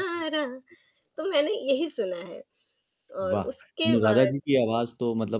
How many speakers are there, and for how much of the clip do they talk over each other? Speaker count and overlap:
2, about 14%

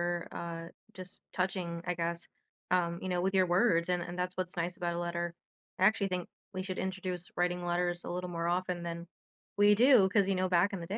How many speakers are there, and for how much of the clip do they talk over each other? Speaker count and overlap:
1, no overlap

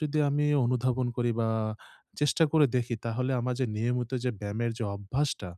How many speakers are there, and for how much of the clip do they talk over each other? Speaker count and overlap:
1, no overlap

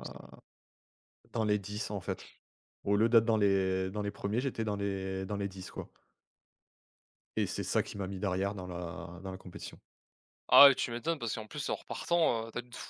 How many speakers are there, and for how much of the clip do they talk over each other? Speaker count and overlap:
2, about 1%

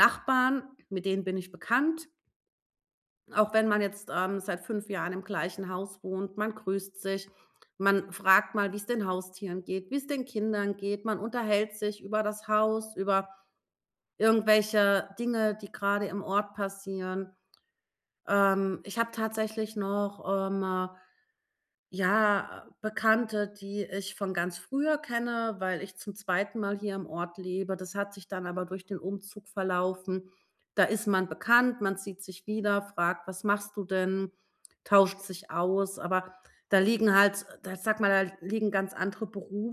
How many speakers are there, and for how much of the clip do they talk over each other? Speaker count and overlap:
1, no overlap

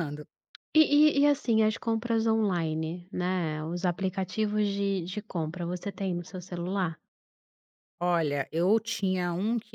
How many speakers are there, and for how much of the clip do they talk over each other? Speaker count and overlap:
2, no overlap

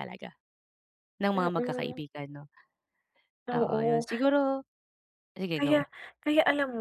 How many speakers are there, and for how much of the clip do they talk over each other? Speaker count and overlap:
2, about 22%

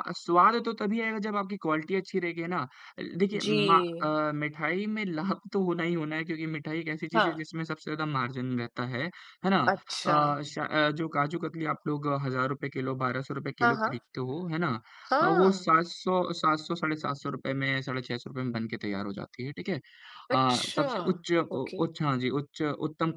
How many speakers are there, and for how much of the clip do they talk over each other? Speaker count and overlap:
2, about 13%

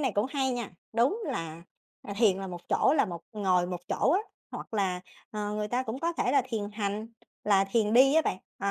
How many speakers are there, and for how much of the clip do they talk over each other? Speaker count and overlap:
1, no overlap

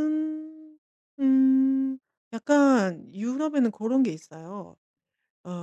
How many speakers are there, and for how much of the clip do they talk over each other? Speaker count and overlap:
1, no overlap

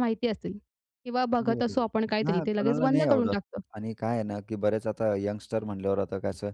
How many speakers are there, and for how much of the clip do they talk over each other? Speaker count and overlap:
2, about 24%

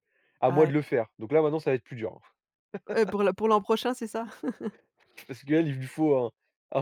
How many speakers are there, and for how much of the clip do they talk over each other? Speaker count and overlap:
2, about 4%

